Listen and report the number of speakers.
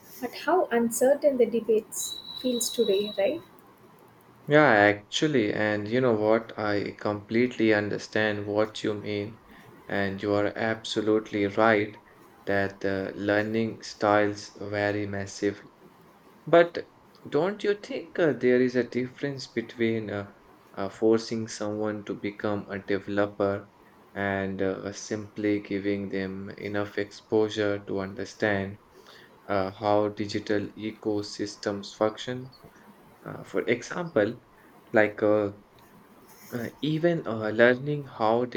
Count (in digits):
2